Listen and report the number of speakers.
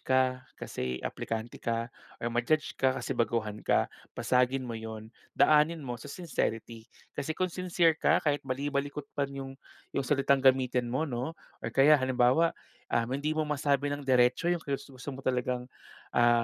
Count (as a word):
one